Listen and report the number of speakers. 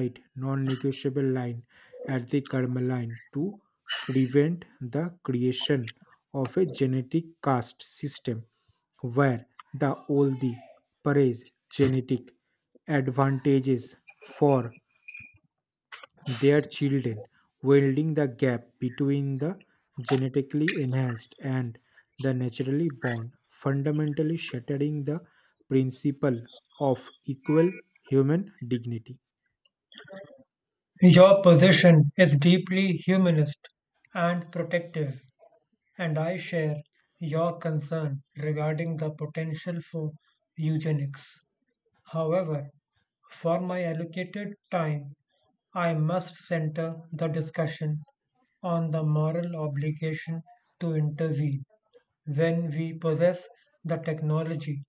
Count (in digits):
2